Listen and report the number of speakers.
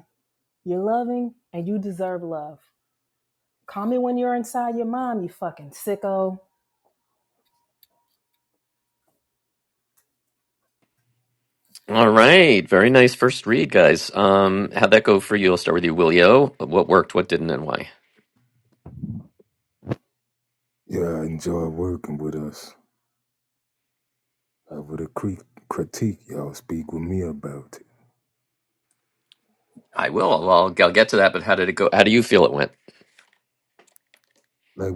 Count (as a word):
three